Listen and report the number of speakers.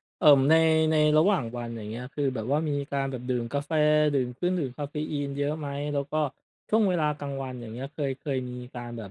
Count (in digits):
1